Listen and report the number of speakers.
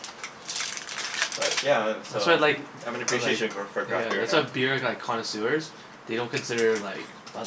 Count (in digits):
2